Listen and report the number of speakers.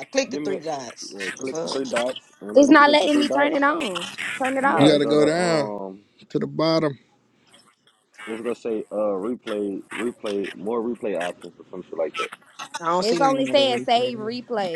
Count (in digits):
4